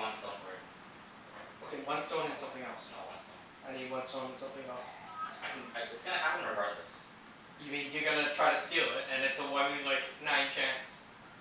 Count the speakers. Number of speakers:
two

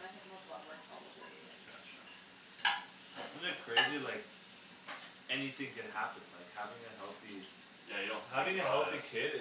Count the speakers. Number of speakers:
three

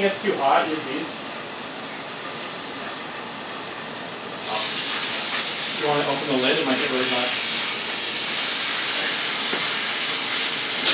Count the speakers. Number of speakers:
one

